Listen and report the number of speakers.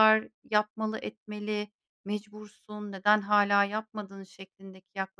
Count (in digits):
1